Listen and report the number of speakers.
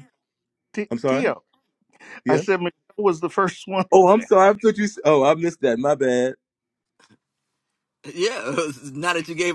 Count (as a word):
three